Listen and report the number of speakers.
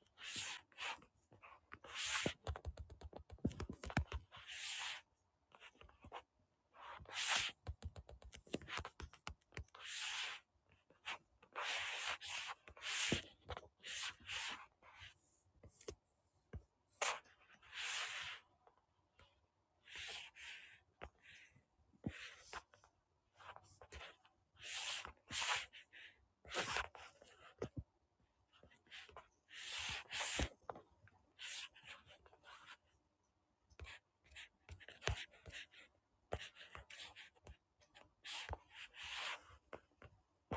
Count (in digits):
0